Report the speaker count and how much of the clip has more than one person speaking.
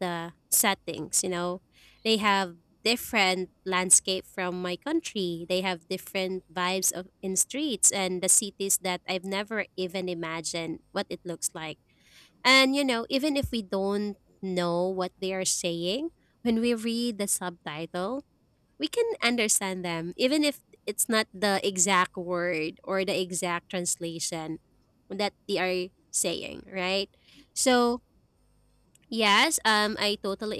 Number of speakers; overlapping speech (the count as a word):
one, no overlap